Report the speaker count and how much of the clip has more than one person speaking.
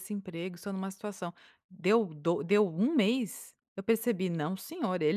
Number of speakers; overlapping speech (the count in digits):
1, no overlap